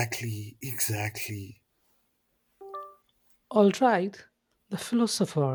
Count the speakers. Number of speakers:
2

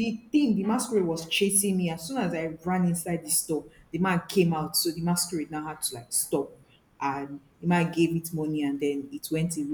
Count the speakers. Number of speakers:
1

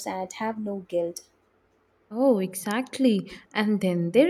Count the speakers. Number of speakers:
2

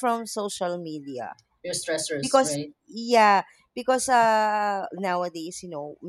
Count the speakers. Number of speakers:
2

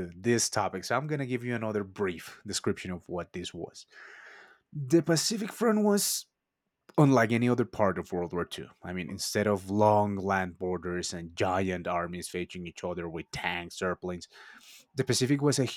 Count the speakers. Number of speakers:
1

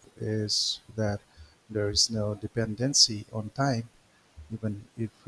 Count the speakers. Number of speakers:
1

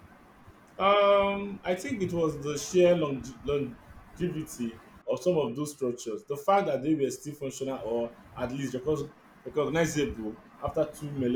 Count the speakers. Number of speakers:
1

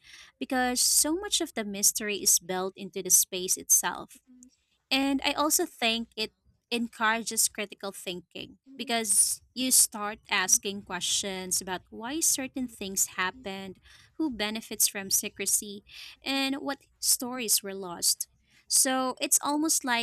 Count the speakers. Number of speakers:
1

